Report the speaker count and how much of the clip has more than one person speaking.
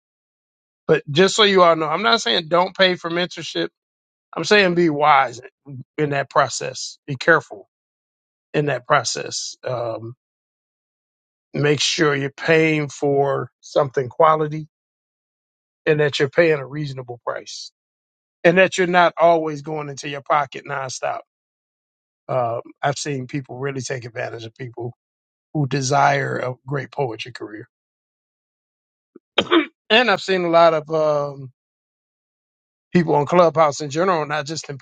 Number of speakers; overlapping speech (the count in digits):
1, no overlap